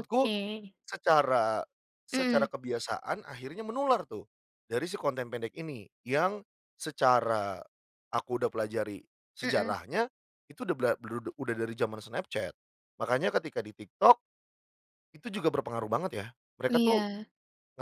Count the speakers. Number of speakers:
two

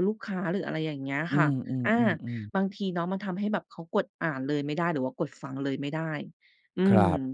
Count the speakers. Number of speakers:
two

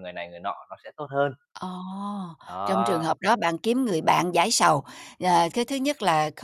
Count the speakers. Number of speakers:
two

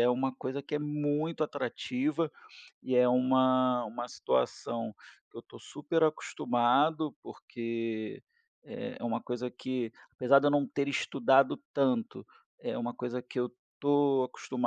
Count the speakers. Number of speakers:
one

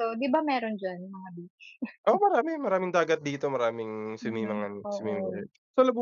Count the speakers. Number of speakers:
two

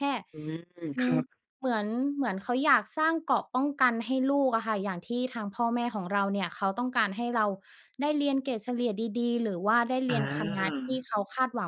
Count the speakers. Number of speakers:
two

